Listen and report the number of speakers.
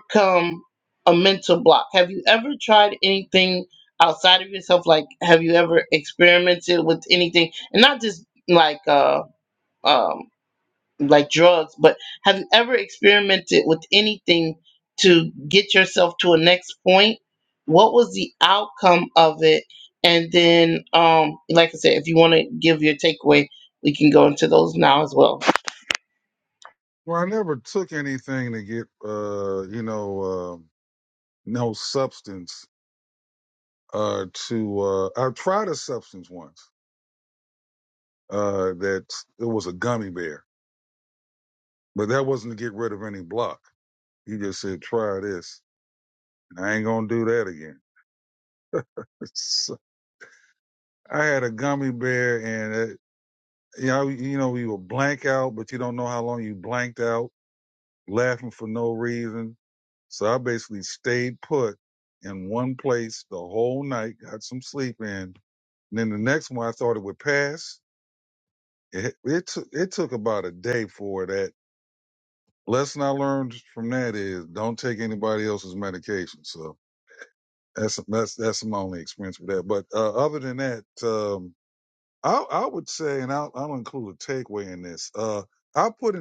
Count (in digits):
2